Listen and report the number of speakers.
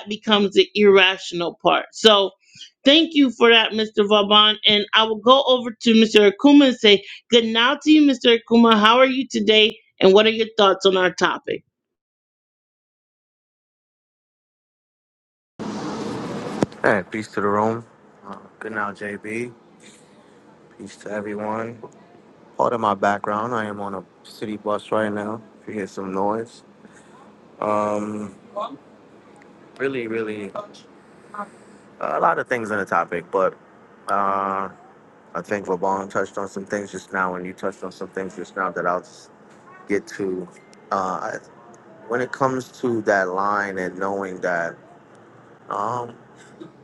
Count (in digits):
2